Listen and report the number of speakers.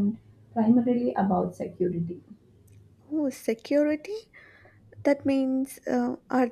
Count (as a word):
two